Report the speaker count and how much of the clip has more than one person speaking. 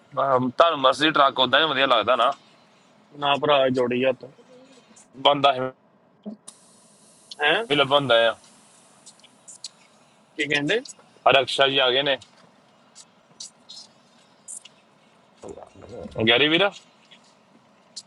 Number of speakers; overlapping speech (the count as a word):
two, no overlap